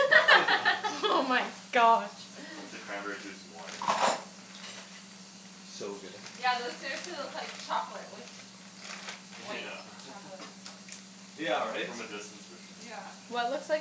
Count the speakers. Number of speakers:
4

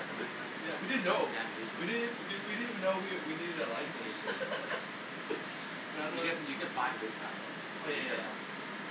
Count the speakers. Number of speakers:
2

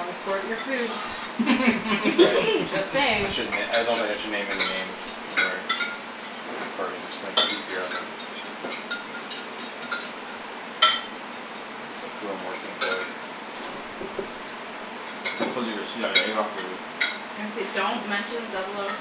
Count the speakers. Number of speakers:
4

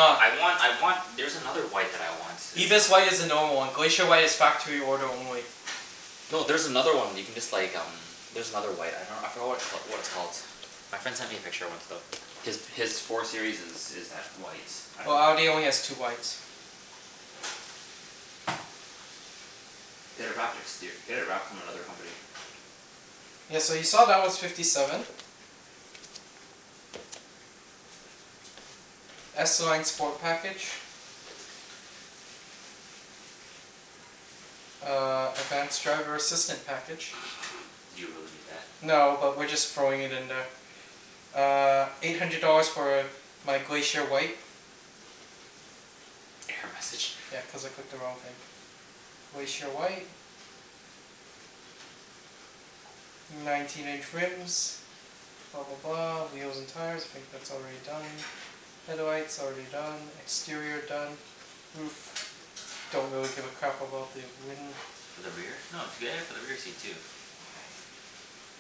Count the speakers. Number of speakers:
2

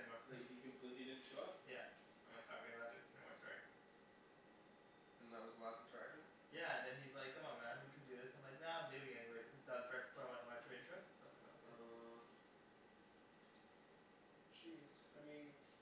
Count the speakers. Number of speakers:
3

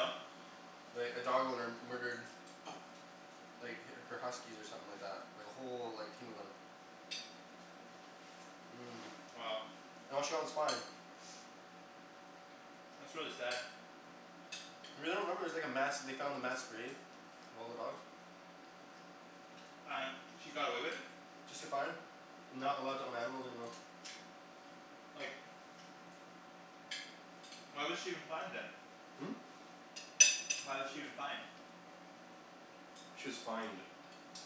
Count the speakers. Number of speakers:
2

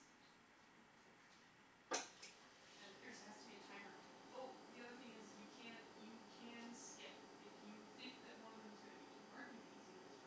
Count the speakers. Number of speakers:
1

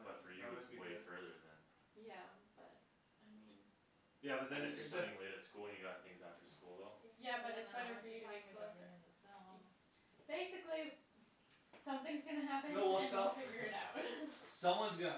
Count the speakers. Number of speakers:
4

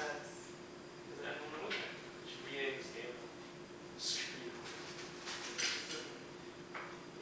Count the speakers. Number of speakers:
2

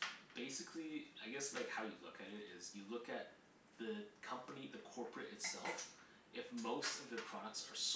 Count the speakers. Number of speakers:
1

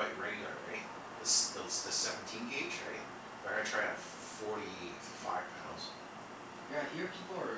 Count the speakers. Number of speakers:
2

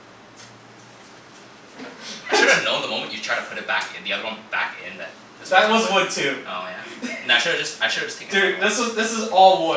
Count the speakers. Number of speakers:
2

